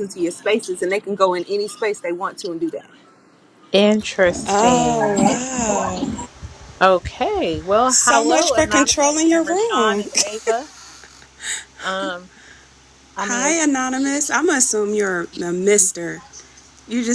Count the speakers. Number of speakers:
3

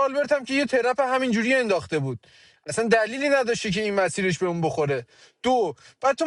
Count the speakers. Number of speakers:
1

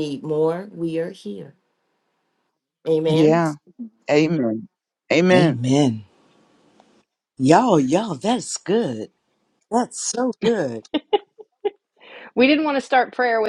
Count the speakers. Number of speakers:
4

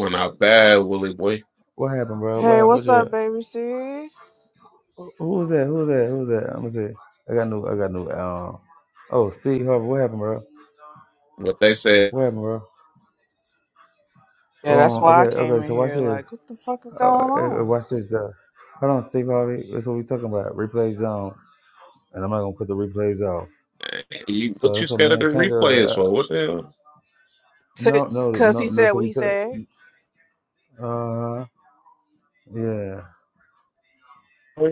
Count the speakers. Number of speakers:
3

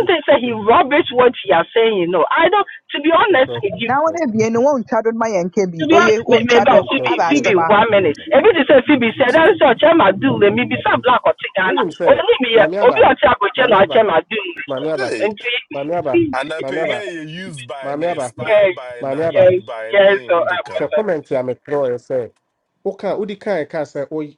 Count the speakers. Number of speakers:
4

